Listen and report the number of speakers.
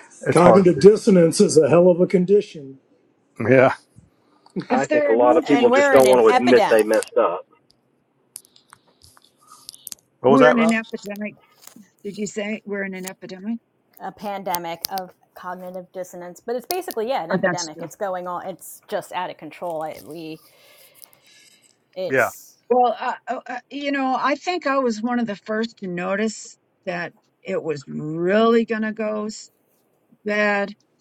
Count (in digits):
5